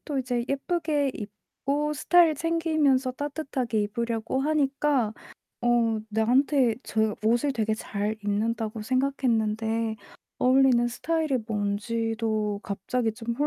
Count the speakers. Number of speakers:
one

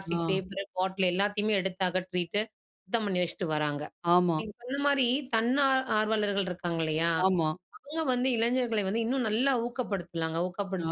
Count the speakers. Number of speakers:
two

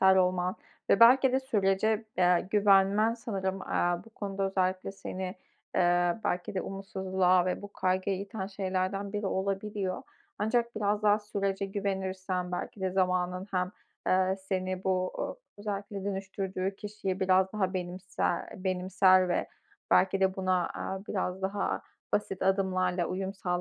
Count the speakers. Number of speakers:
one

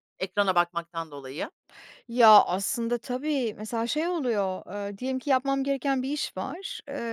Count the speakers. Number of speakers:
two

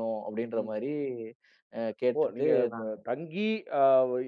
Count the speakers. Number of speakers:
two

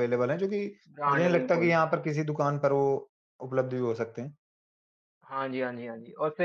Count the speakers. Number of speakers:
two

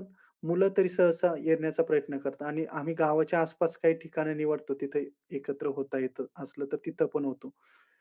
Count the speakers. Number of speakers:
one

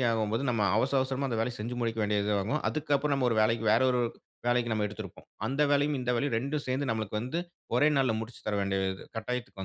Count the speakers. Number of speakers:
one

